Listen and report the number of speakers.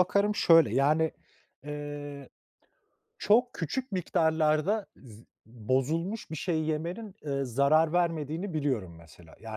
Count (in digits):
1